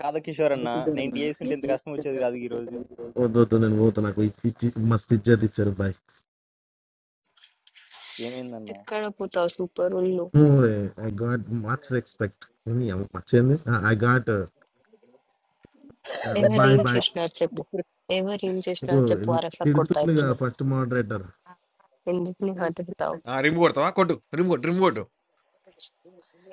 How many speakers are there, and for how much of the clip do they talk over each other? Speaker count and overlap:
four, about 9%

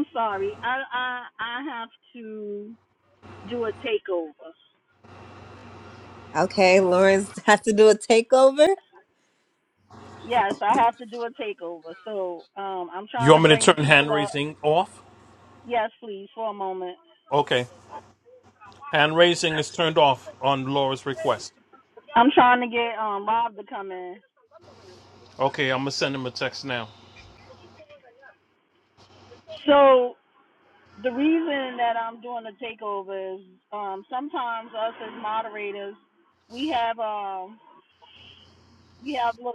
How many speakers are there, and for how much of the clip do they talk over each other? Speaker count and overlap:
three, about 3%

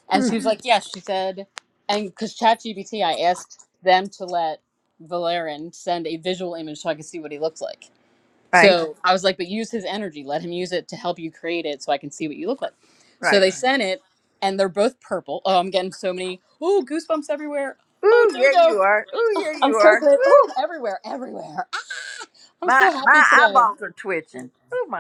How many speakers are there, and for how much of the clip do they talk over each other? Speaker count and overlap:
two, about 13%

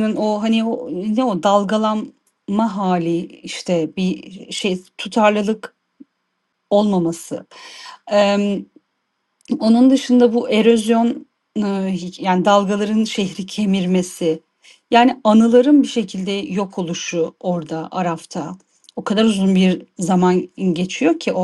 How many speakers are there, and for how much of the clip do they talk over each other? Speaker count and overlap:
one, no overlap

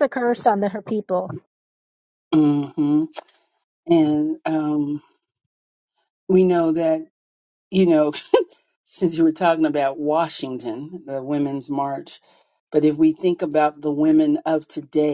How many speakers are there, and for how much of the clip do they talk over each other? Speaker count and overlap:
two, no overlap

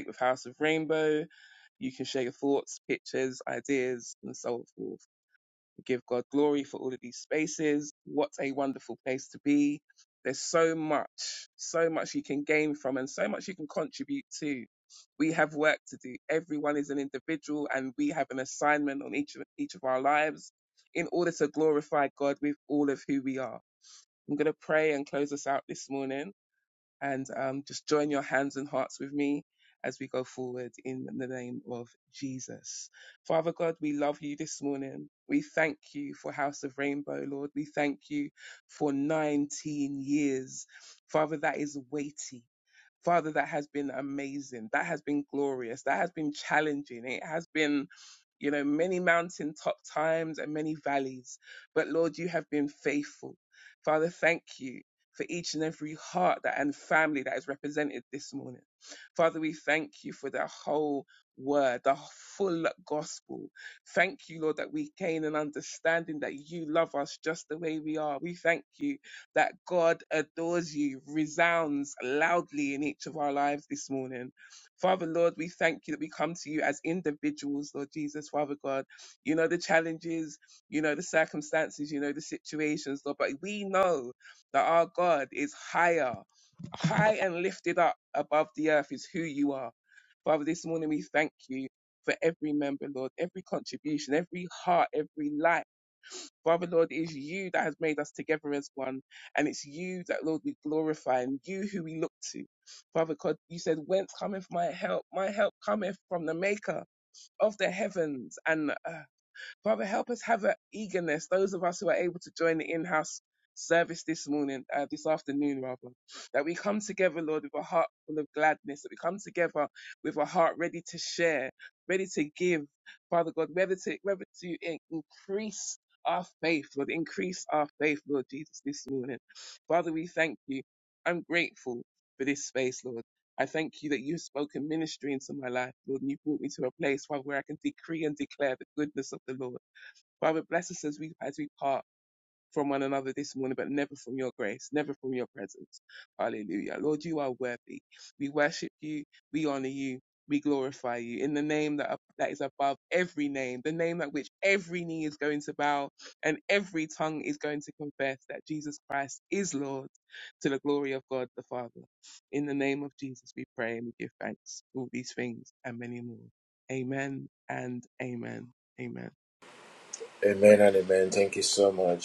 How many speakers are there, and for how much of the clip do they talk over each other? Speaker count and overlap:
two, no overlap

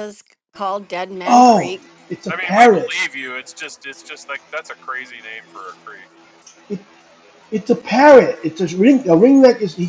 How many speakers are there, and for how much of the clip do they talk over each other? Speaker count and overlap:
three, about 11%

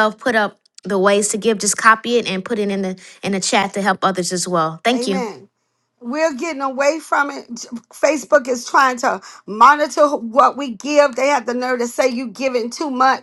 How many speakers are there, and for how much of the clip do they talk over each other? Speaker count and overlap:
two, about 2%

